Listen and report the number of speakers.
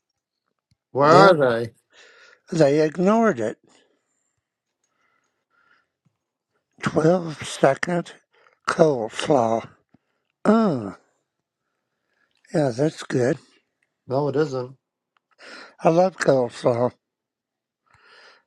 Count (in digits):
2